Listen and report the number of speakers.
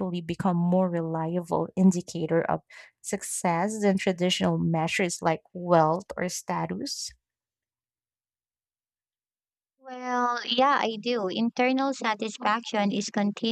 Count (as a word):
two